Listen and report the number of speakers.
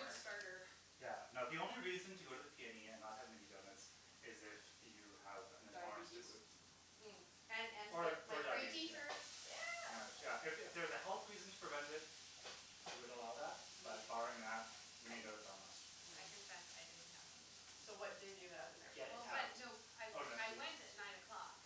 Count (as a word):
four